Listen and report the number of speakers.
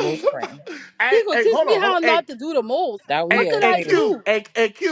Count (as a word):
three